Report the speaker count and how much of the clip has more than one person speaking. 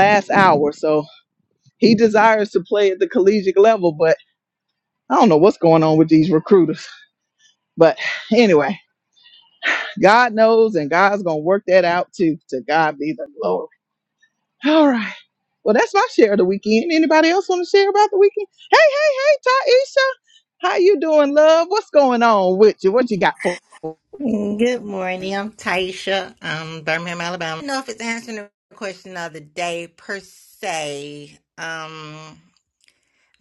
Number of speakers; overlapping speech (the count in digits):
2, no overlap